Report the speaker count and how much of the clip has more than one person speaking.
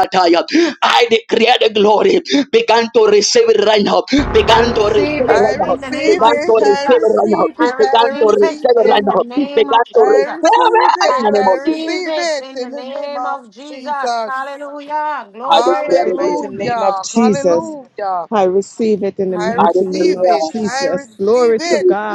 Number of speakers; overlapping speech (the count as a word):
four, about 63%